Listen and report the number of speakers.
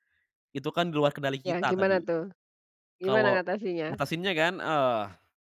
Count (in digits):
2